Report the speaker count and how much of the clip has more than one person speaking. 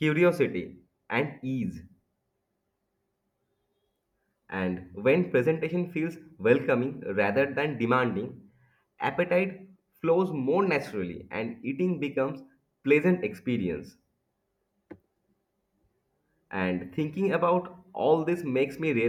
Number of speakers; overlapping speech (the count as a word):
one, no overlap